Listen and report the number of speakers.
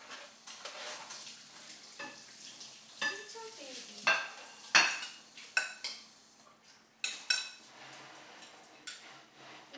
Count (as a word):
one